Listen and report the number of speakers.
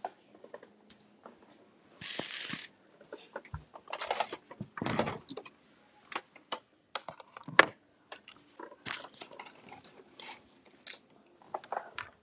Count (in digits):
0